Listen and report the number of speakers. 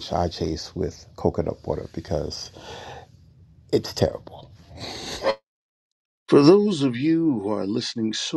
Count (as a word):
two